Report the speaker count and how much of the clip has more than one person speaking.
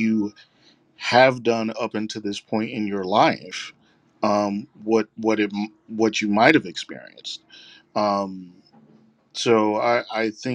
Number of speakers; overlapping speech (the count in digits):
1, no overlap